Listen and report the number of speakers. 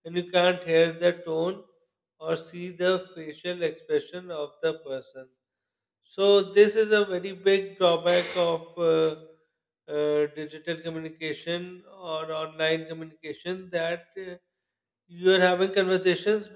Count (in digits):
1